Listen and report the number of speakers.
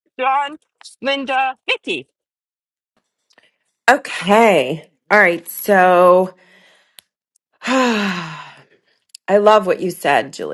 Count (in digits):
2